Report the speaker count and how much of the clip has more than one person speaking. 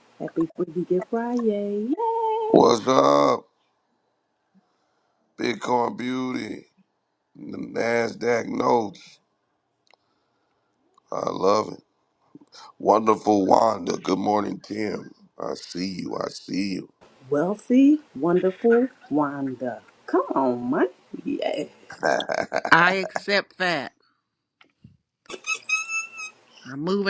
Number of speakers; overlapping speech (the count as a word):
three, about 1%